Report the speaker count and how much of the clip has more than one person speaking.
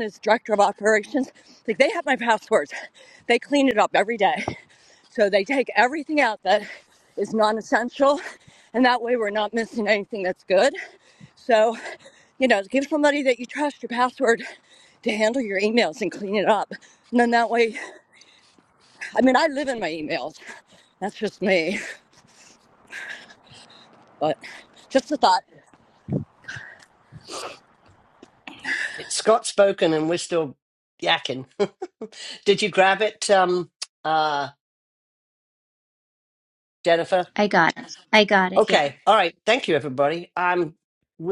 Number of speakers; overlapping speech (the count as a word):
three, about 1%